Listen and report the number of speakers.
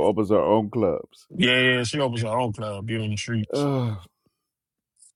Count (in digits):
2